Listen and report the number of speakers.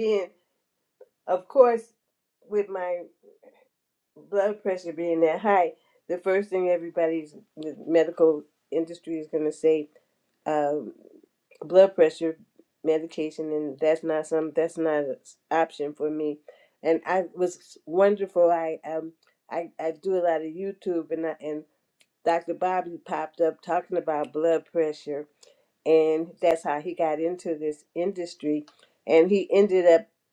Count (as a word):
one